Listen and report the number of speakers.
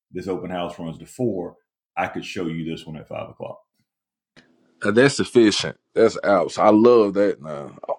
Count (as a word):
two